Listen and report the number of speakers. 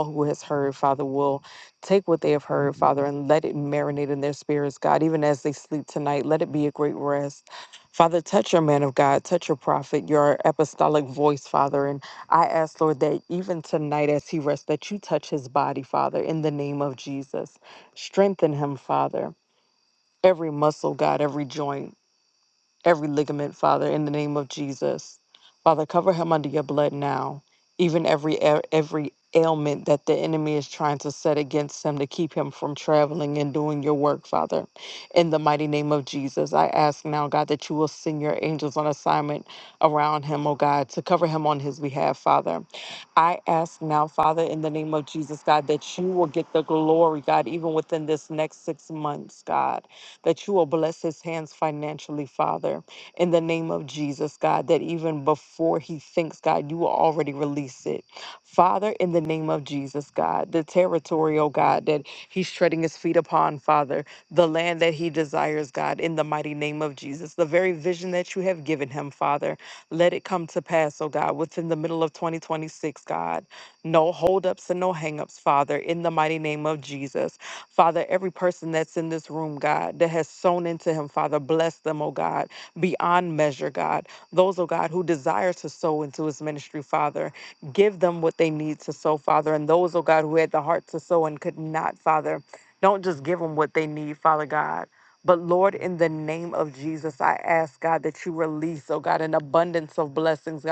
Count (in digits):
1